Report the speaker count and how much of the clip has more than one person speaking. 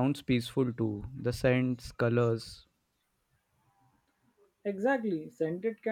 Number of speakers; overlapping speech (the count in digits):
2, no overlap